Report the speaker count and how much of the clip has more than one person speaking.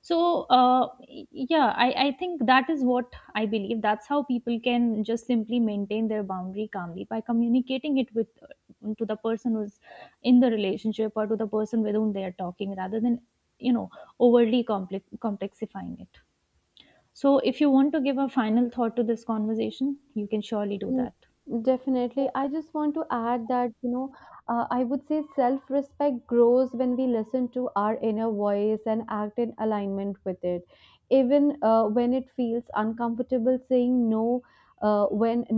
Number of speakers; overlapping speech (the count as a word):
two, about 1%